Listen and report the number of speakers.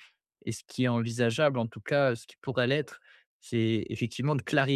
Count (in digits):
1